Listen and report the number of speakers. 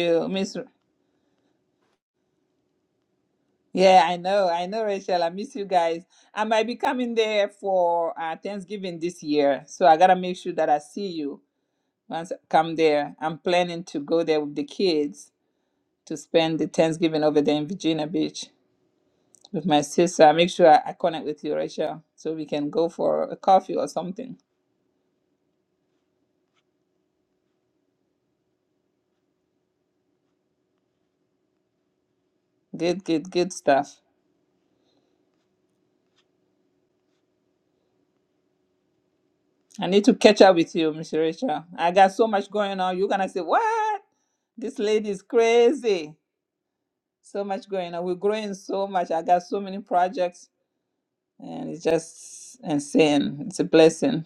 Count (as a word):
one